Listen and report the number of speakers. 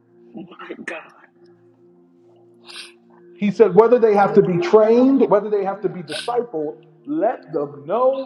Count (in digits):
2